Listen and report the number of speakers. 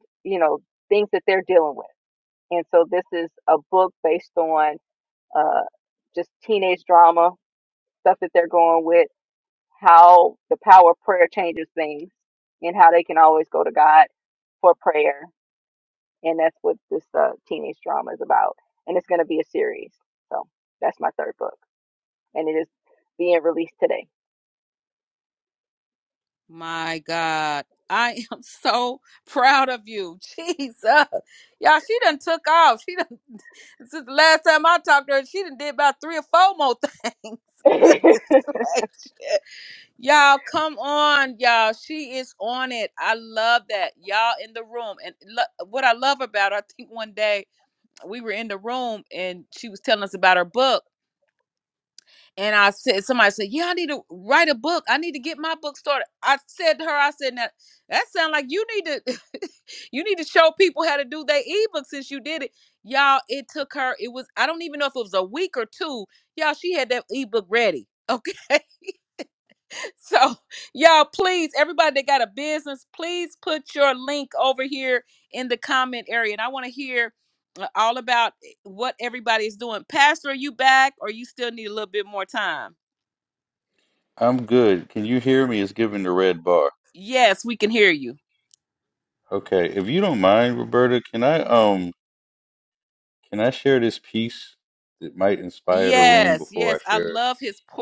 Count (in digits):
3